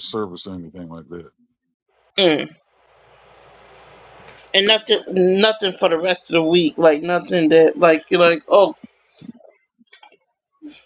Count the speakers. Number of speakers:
2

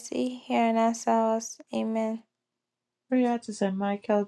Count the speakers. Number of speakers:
2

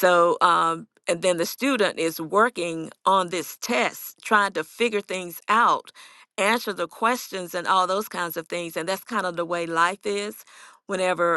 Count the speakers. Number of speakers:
1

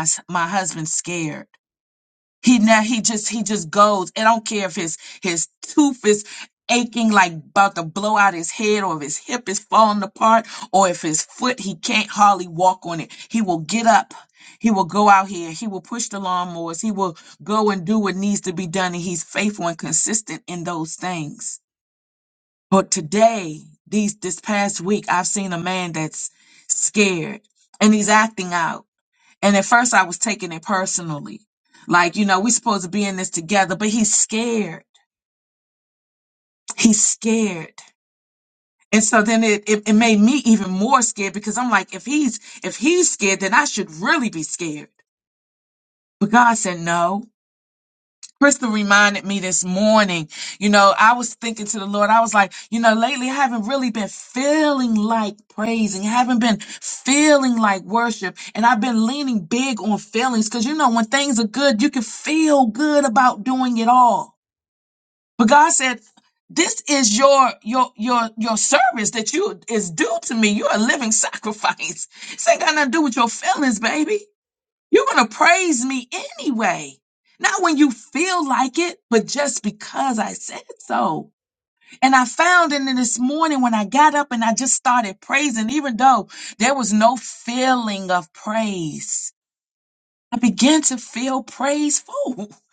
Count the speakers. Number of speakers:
1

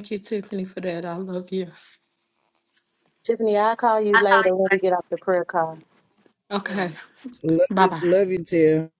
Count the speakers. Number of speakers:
3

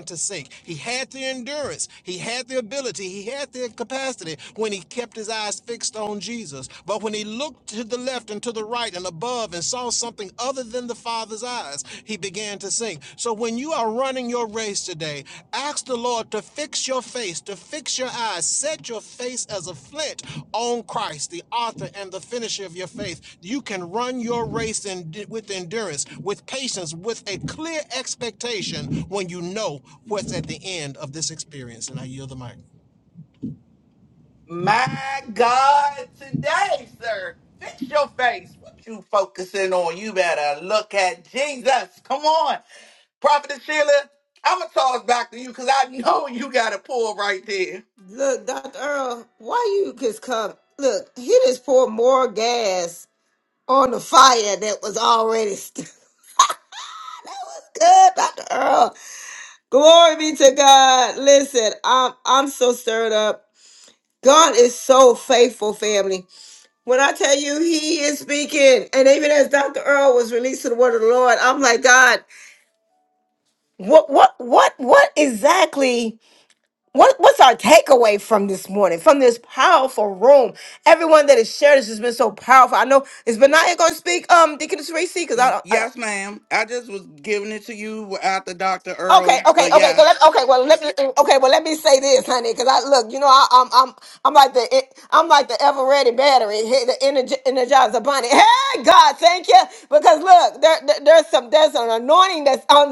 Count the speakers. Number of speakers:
3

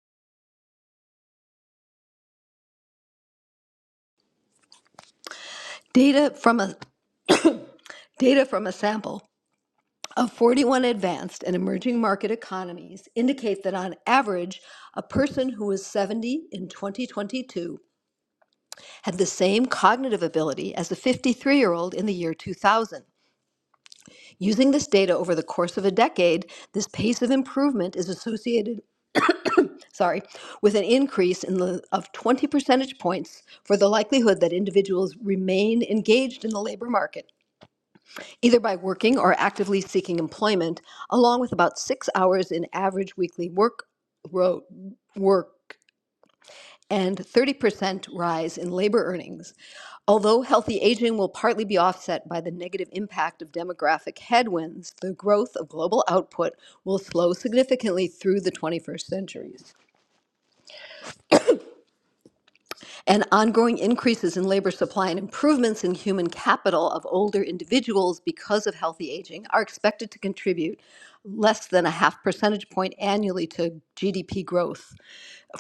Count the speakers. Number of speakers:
1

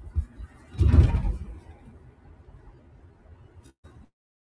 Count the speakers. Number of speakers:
0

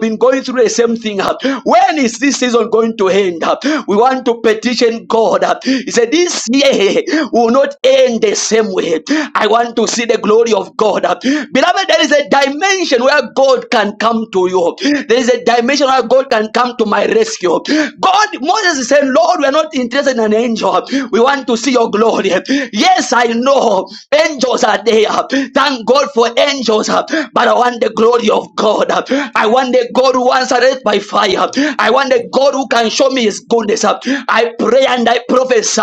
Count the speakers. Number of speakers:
1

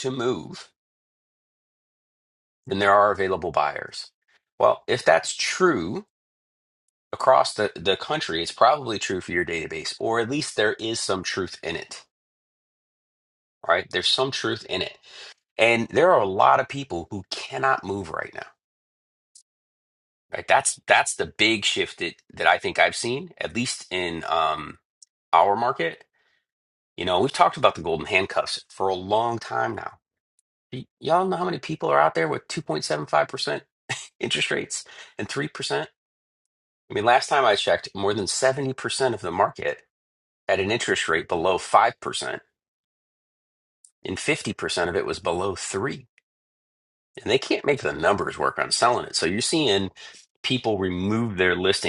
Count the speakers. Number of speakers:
1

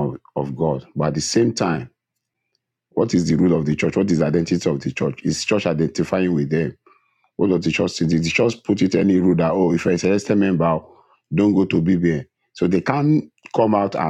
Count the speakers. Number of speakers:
1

